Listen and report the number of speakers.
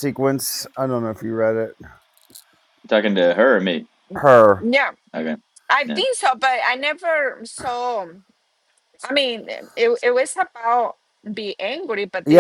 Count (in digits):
3